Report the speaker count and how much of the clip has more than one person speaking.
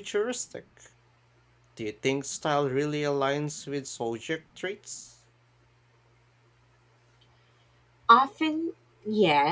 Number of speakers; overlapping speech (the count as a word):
two, no overlap